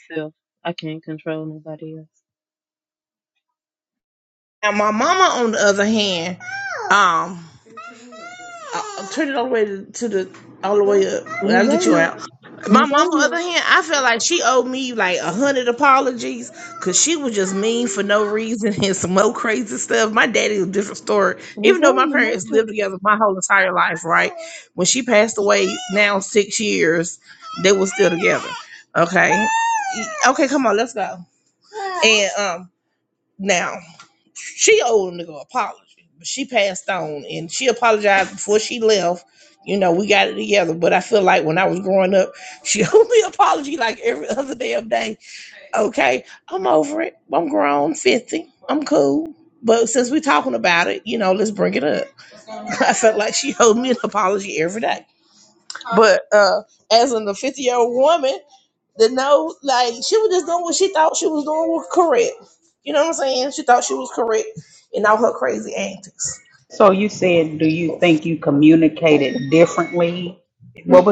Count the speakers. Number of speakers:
3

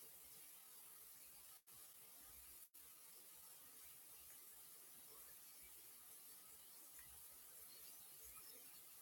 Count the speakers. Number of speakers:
0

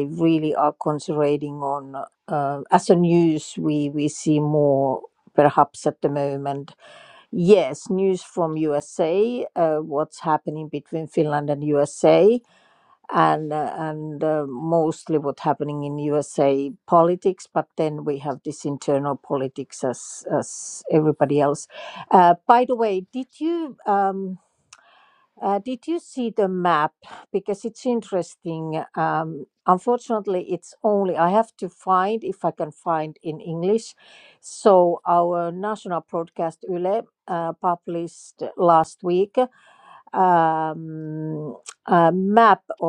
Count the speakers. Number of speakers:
1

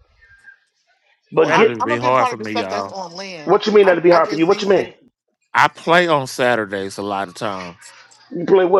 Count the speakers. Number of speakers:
3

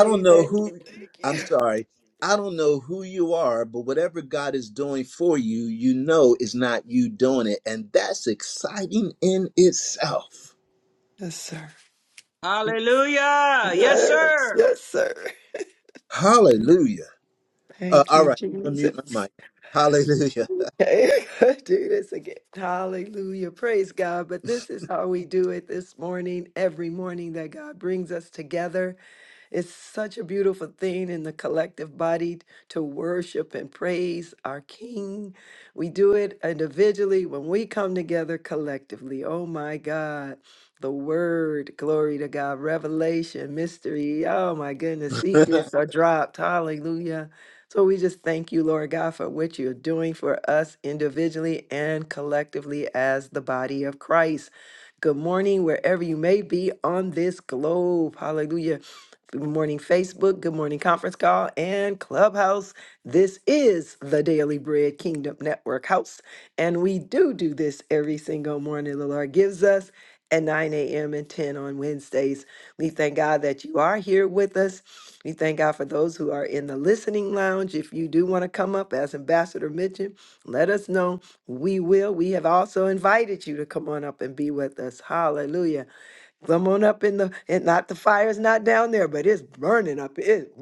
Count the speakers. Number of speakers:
3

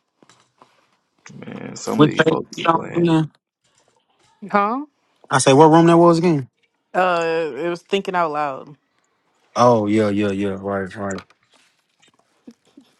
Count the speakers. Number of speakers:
3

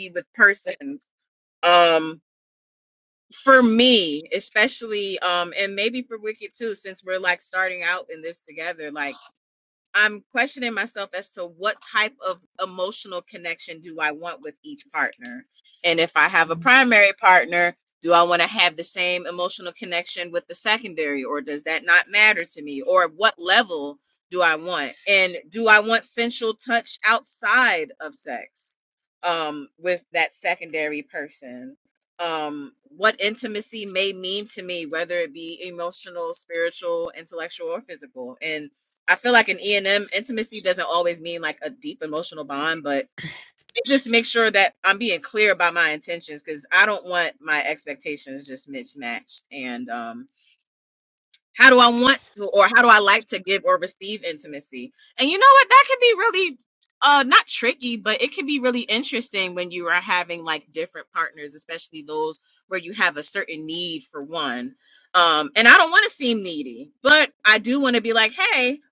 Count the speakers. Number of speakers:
1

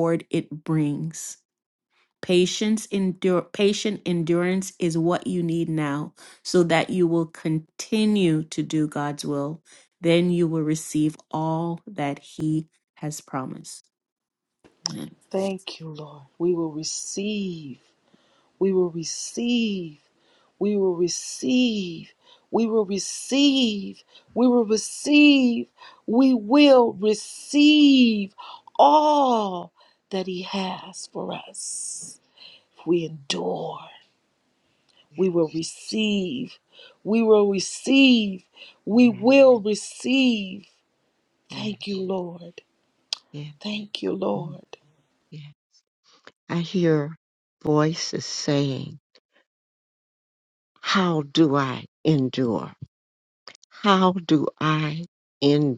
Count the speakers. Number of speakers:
3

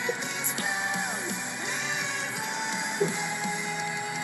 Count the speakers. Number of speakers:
0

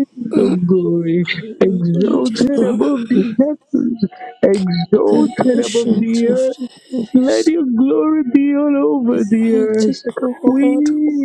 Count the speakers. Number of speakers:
2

